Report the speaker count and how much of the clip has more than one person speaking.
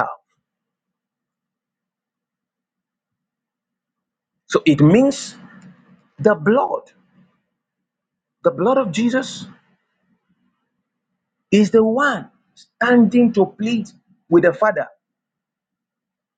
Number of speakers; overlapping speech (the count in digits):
1, no overlap